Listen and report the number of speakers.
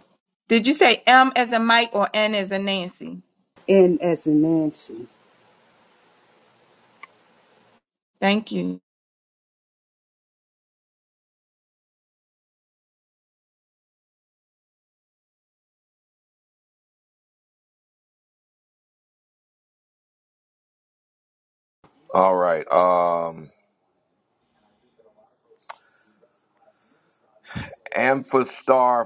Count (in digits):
3